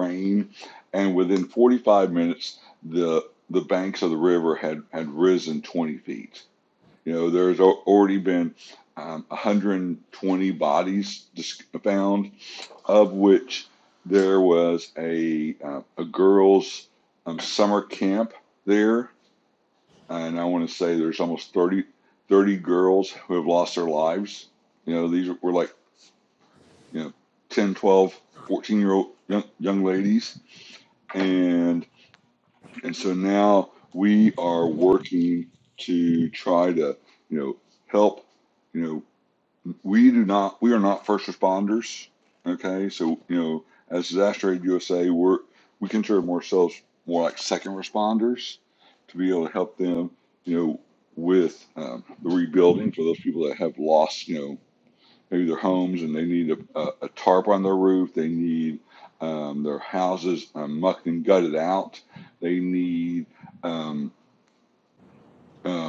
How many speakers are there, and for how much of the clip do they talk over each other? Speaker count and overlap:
one, no overlap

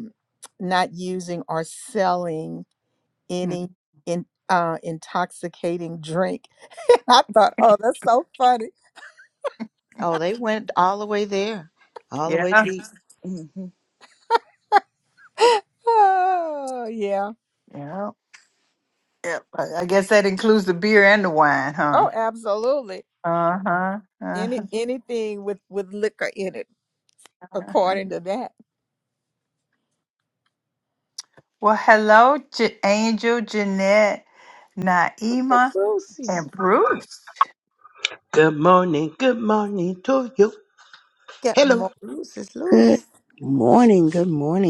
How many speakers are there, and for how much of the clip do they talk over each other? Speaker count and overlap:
five, about 4%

